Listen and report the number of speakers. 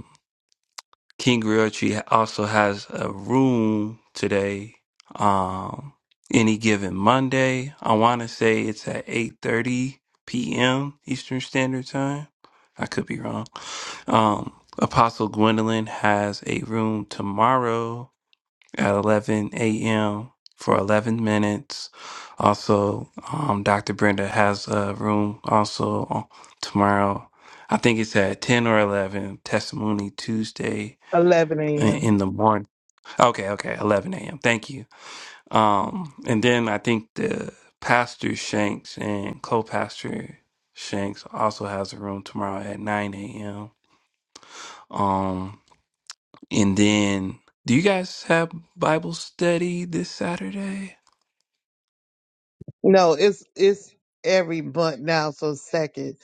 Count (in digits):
2